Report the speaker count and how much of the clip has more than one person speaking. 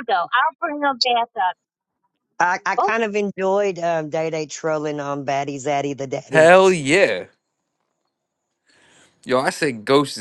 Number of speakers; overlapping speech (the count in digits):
3, about 3%